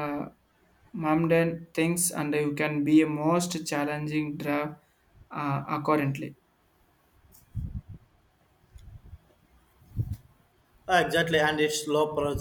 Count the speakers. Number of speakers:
2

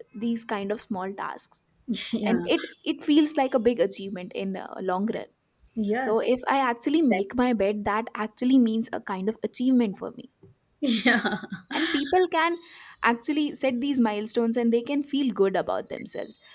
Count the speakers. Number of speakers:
2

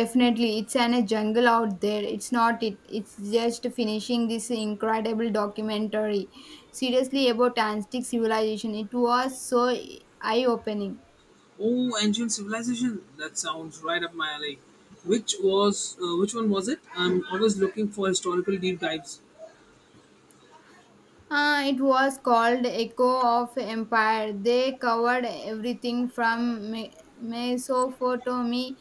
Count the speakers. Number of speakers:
2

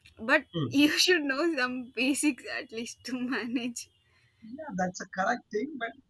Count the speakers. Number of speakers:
2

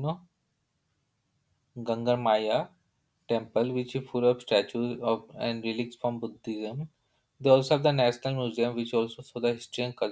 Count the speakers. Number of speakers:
1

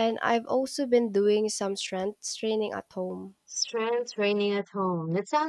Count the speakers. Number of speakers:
2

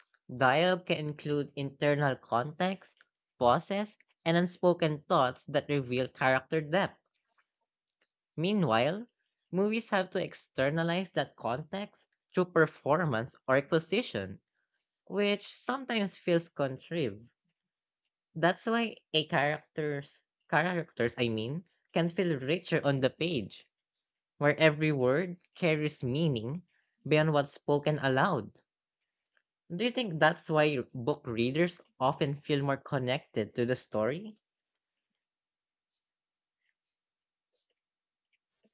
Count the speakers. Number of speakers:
1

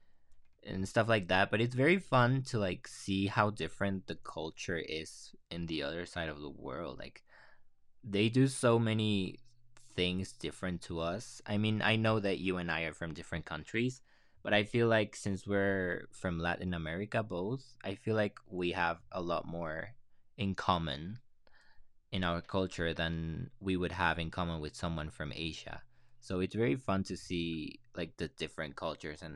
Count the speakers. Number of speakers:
1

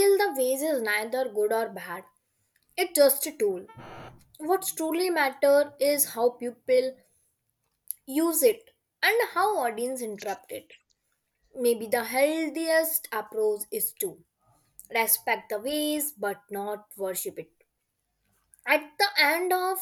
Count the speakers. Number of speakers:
1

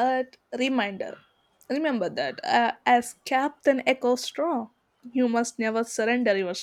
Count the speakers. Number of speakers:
1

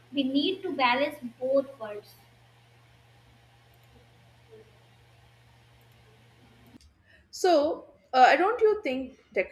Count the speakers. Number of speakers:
2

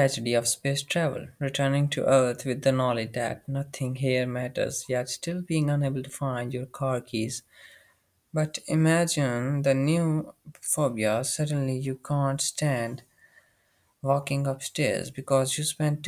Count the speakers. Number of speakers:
1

